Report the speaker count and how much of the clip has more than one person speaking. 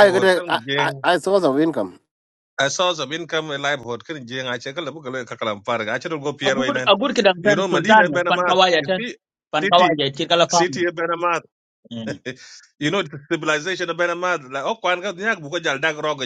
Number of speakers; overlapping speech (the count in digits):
3, about 18%